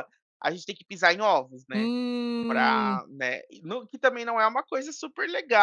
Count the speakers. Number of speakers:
2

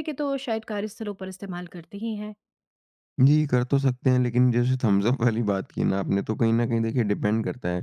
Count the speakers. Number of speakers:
2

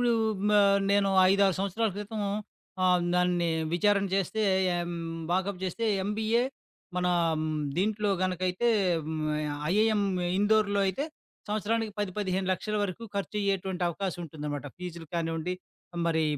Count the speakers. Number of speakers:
1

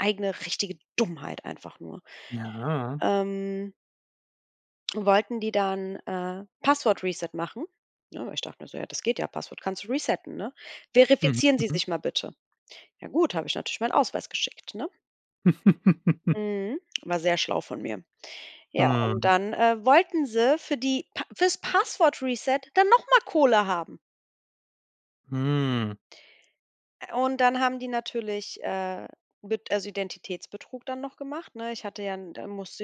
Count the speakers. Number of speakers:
2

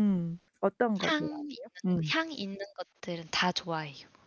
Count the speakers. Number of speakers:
2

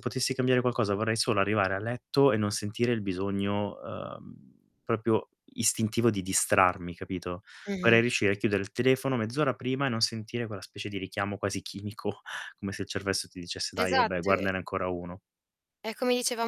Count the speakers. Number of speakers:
2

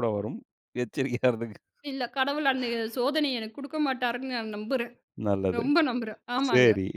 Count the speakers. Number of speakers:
2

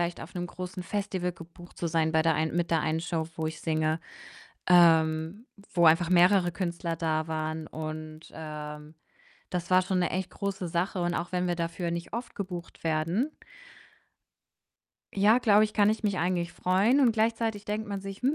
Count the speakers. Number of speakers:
1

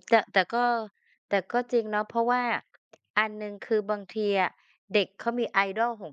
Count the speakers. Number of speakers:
1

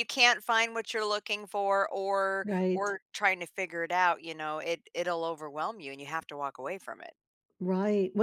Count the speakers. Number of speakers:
2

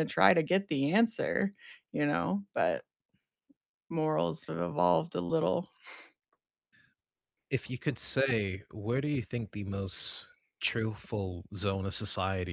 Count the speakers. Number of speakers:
2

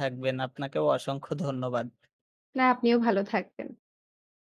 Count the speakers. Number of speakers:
2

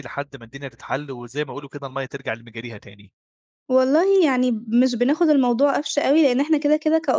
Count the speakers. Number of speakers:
2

